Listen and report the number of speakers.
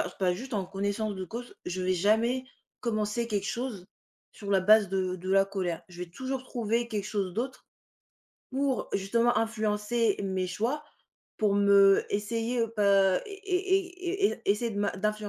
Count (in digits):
1